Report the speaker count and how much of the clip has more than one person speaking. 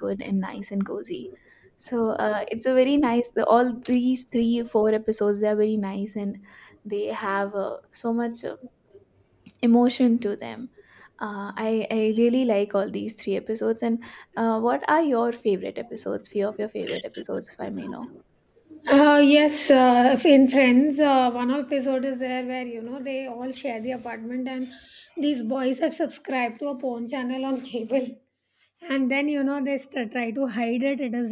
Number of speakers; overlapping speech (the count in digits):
2, no overlap